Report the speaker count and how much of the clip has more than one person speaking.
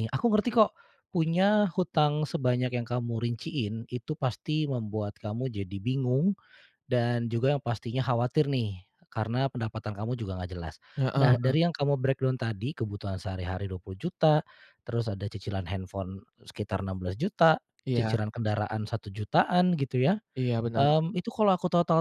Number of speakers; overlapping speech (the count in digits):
2, about 4%